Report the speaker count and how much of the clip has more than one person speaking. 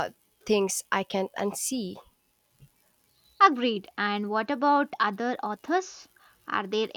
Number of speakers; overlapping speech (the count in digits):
2, no overlap